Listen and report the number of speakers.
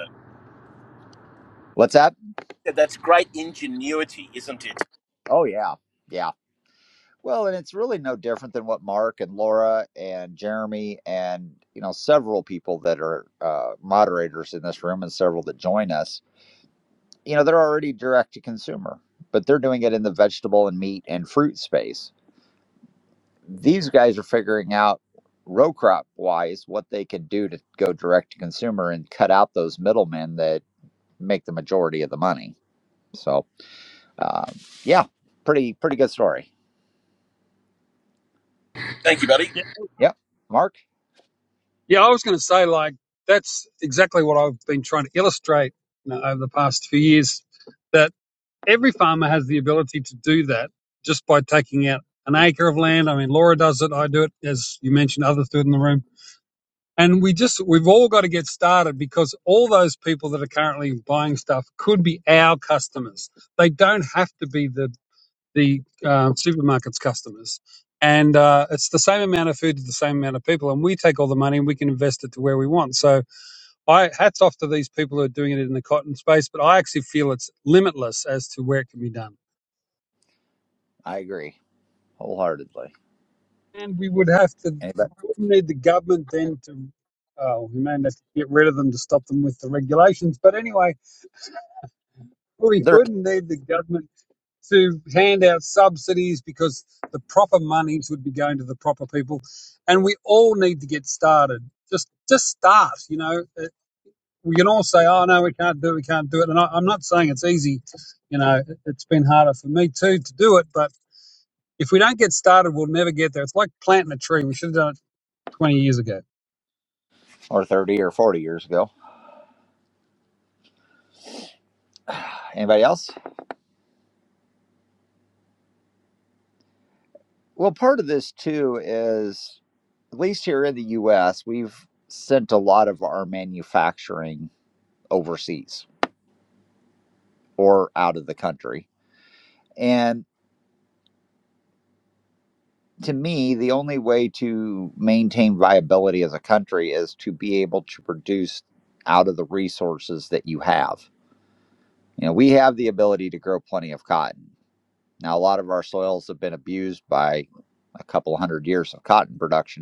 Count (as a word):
three